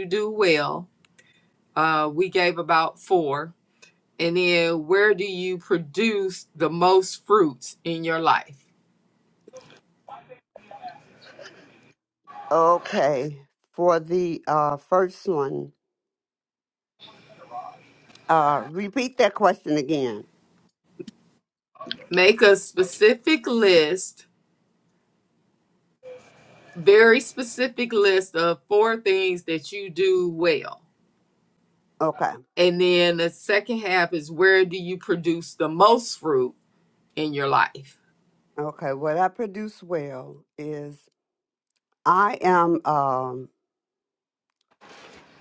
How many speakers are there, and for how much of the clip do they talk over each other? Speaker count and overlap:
two, no overlap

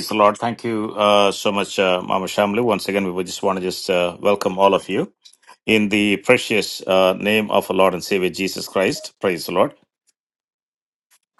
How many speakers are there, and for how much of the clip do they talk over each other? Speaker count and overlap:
one, no overlap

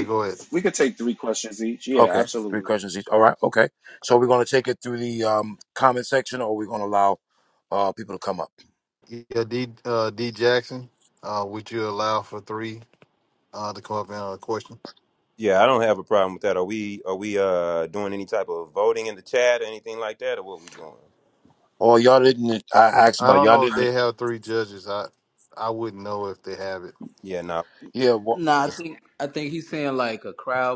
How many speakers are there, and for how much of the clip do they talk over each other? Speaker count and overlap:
five, about 5%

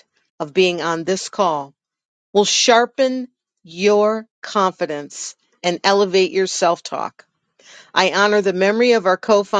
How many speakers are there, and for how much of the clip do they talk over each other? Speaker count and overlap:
one, no overlap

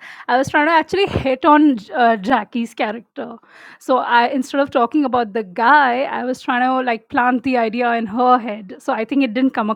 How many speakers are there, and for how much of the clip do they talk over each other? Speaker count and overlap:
one, no overlap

